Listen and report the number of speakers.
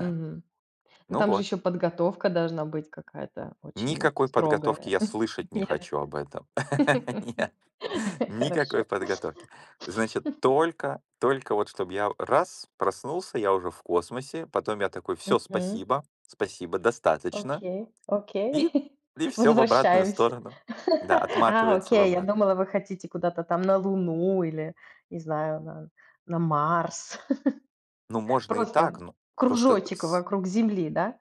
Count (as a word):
two